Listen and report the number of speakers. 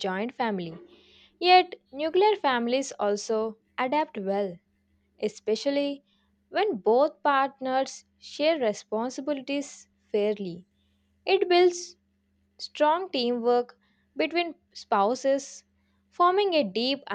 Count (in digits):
1